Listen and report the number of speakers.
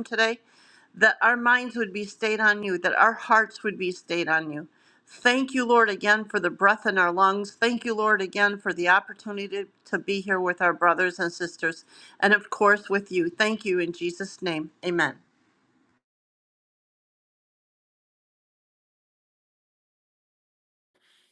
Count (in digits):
1